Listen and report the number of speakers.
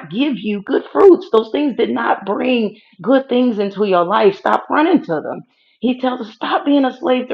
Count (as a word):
one